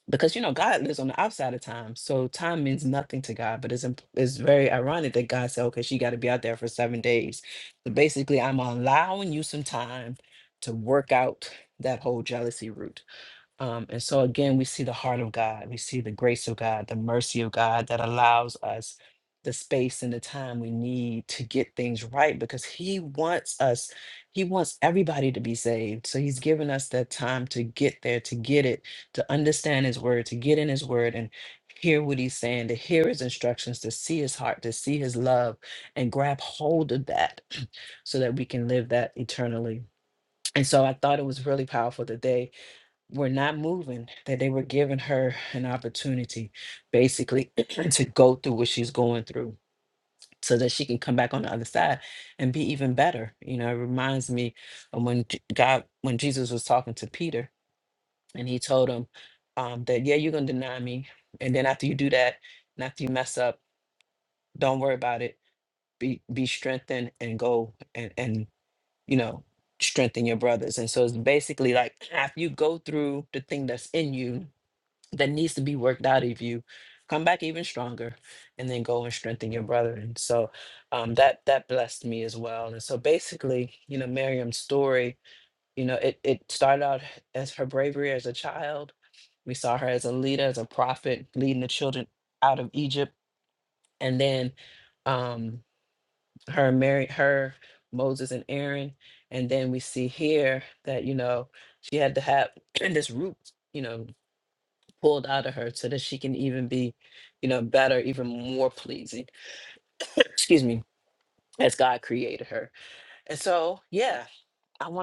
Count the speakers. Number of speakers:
1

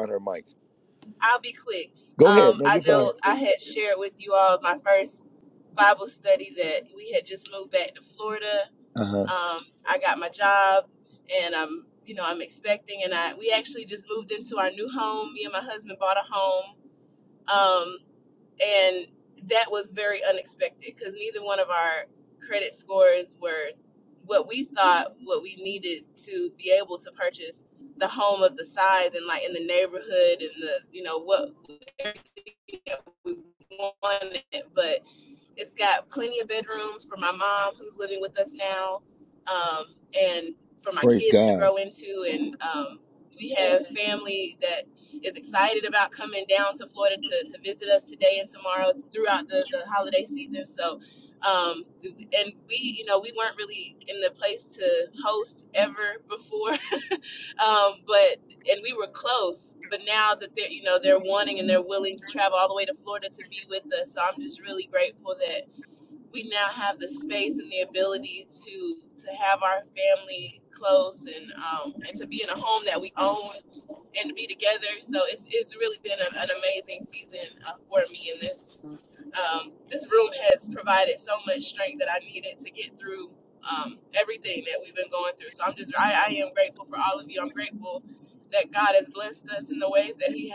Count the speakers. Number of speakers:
2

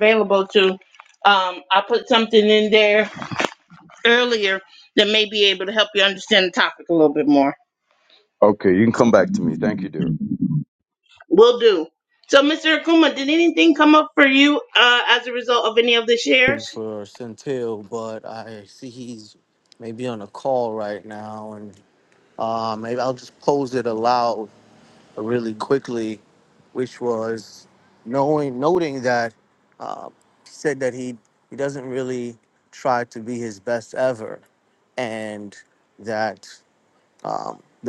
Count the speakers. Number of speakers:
3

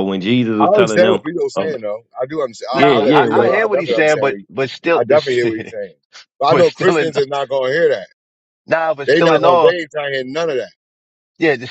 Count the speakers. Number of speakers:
3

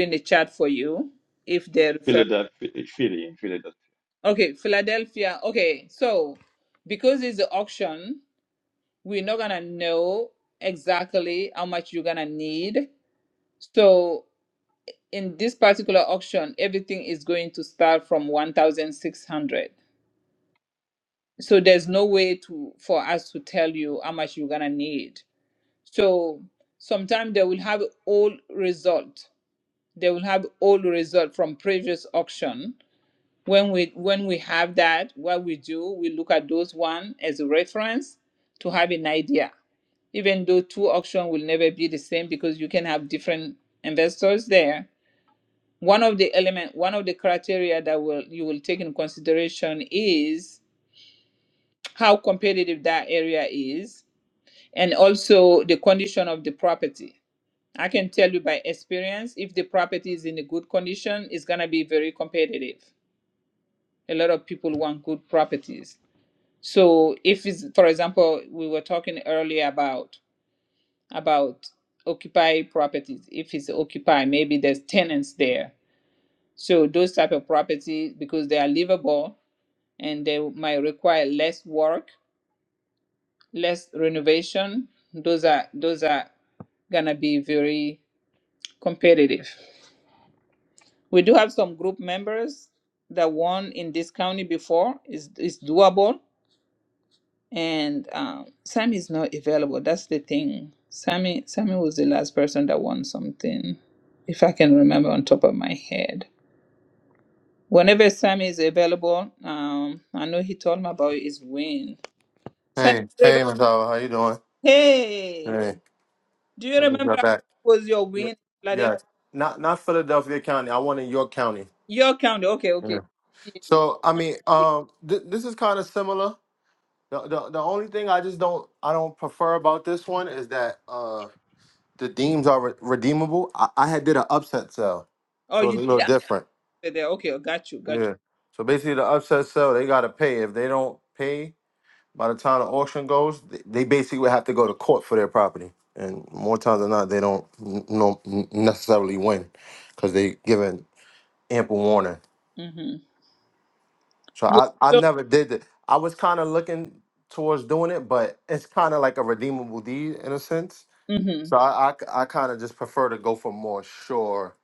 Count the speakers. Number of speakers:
3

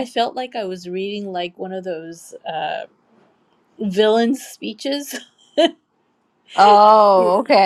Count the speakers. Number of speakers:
2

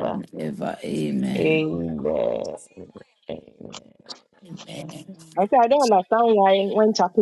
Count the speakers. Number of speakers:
3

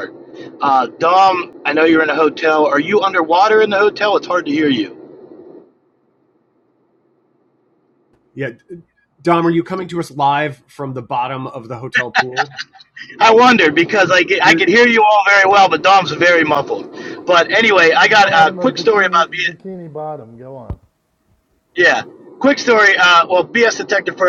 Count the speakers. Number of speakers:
3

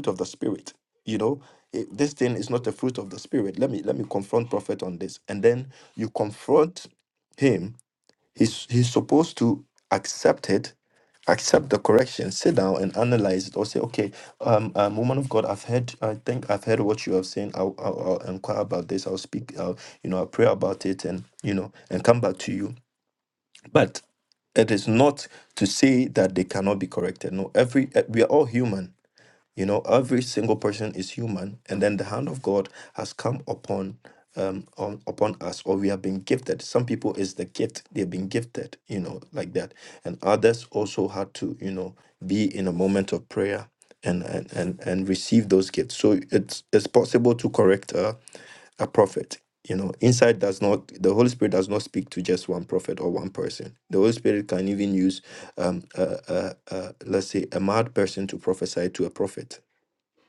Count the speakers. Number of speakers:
1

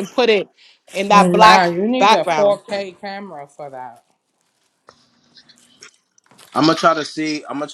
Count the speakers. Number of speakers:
3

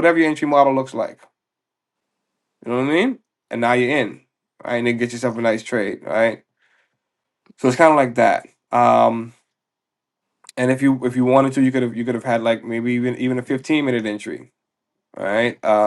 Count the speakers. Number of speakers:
1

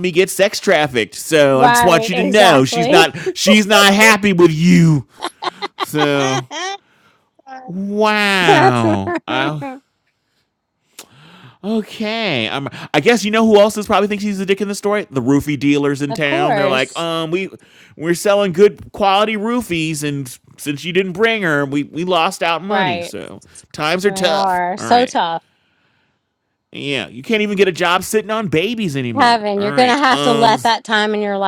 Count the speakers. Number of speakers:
2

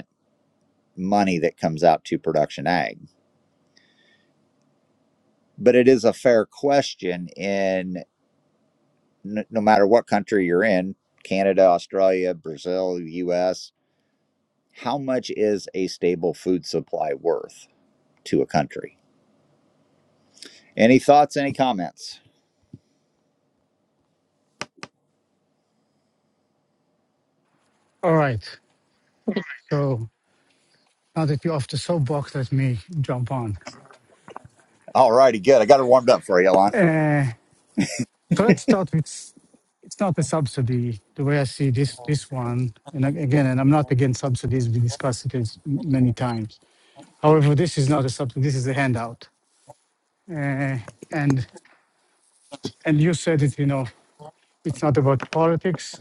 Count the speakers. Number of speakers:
2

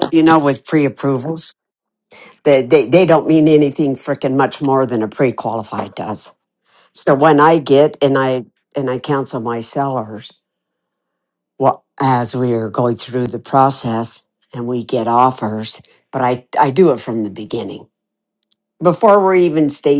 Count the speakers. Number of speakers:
1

